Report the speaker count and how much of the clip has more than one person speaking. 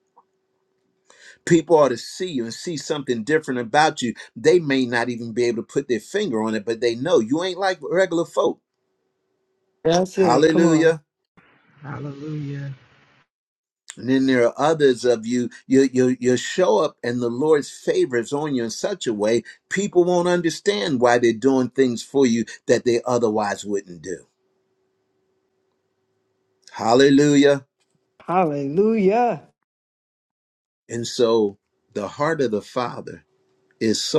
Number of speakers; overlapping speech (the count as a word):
three, about 2%